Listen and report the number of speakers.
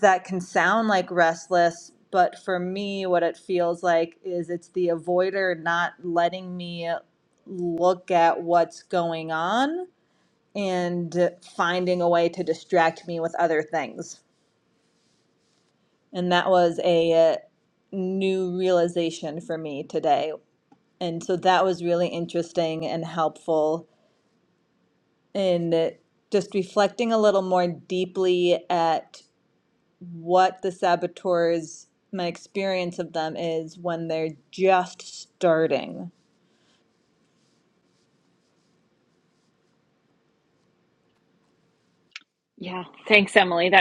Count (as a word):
two